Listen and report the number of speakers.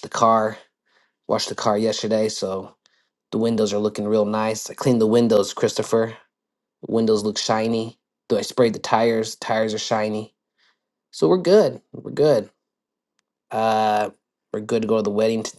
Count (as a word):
one